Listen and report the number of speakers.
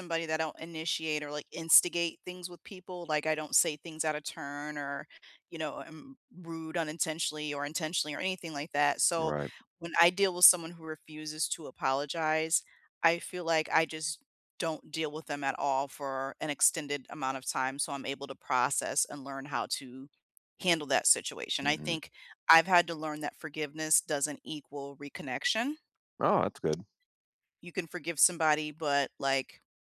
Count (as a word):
two